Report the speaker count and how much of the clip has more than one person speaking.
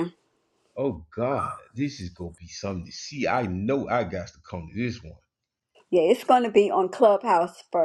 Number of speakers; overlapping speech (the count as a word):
two, no overlap